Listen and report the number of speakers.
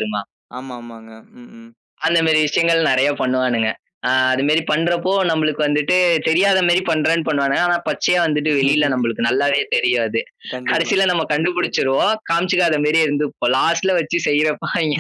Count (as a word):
two